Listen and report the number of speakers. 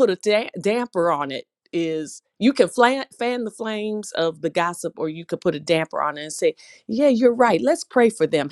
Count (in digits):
1